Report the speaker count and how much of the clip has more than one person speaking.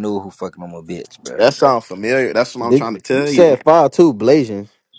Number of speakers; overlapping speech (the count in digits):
3, about 22%